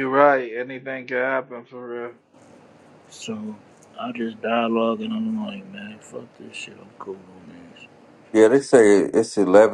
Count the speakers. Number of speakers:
three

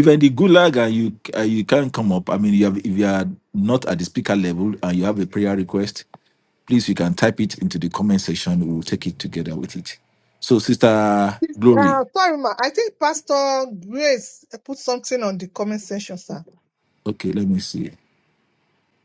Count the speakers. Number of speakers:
two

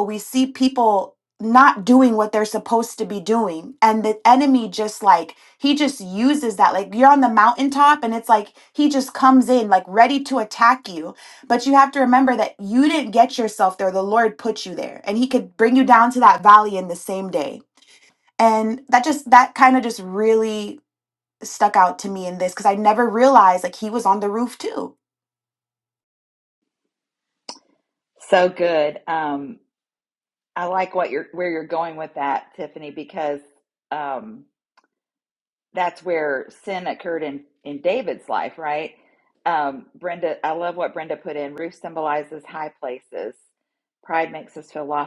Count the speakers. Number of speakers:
two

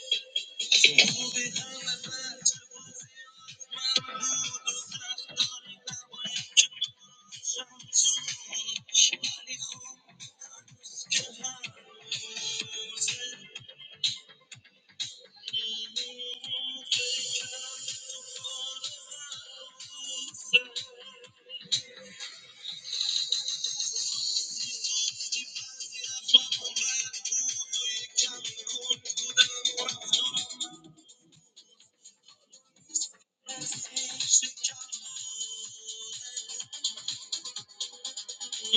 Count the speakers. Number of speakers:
zero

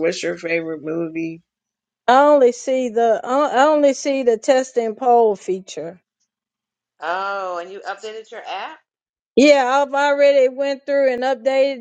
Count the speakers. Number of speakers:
three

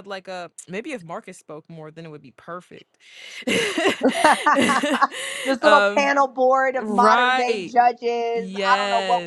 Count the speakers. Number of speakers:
two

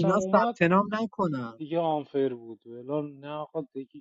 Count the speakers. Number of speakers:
two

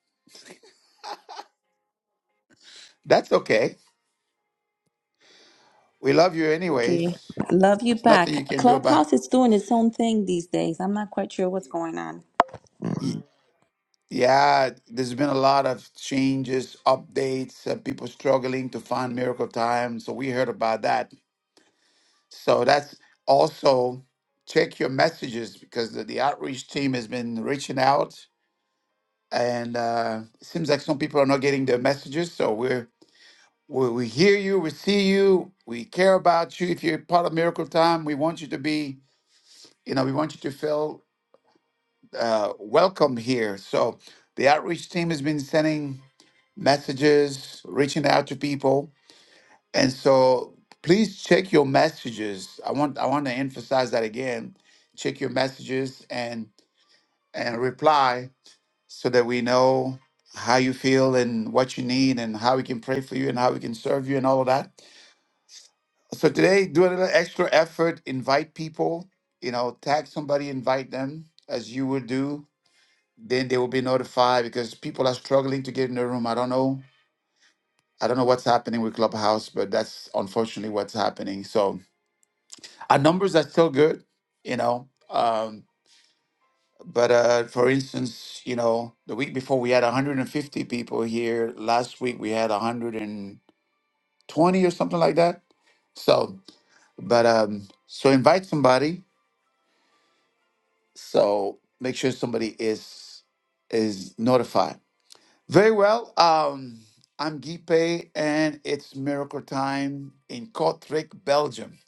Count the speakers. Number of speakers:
two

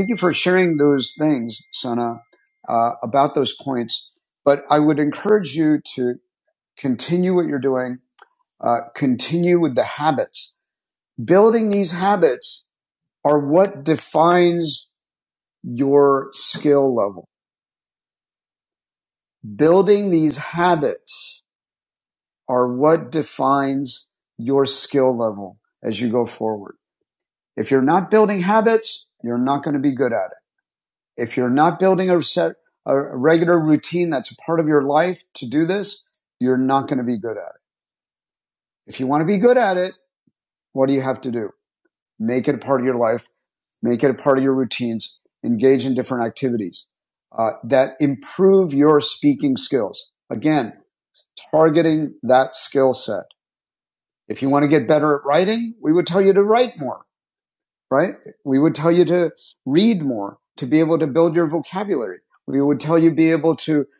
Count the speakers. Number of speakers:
one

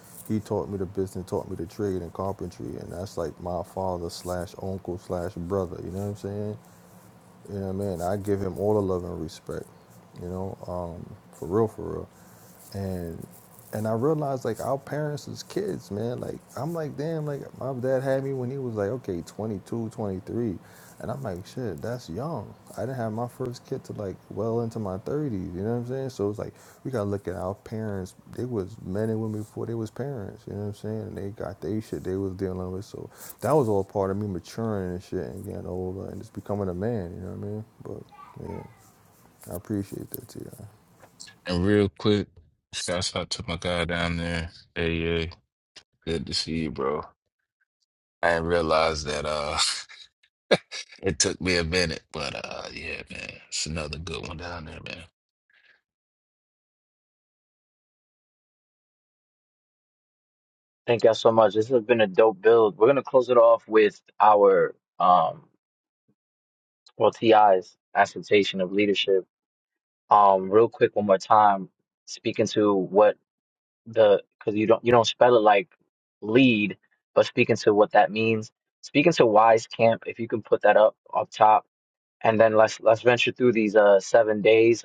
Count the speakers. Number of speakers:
three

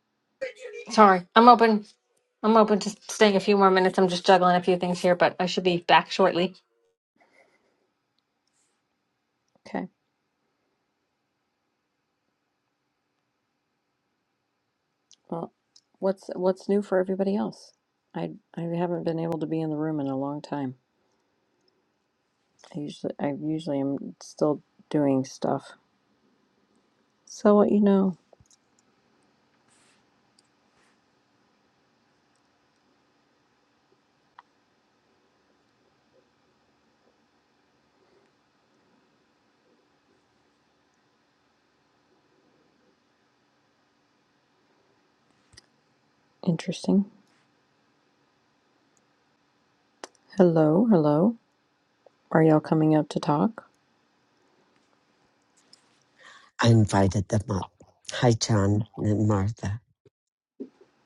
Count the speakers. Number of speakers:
three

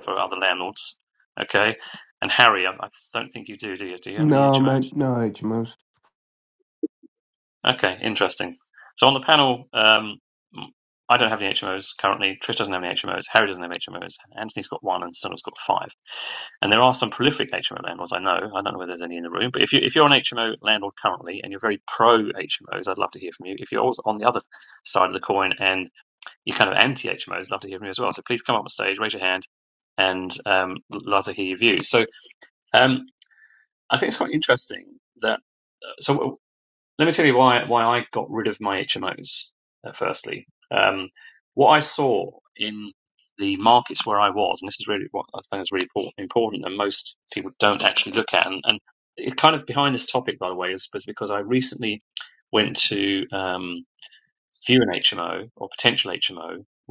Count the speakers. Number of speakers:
two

